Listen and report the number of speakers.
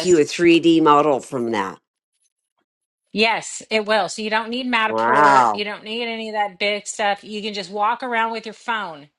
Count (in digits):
2